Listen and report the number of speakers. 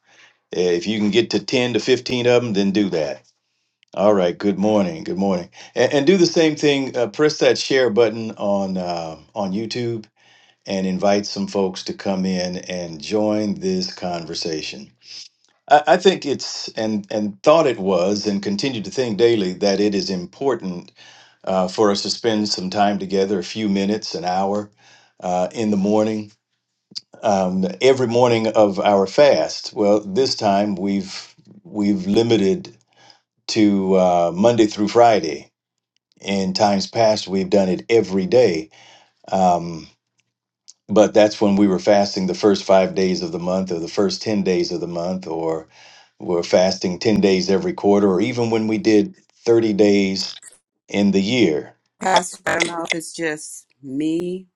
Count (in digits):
2